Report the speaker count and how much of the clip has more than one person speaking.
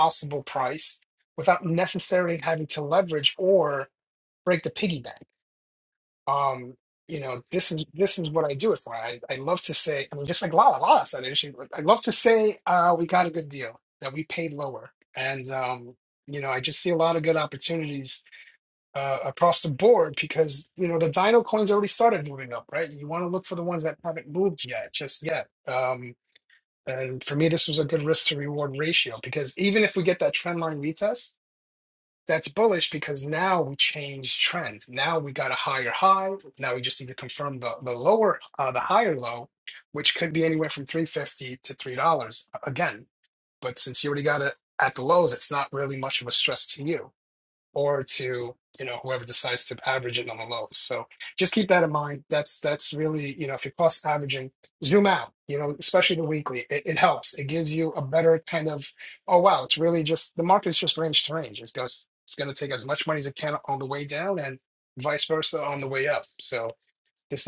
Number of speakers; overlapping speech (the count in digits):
1, no overlap